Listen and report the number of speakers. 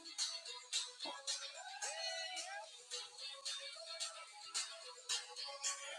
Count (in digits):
0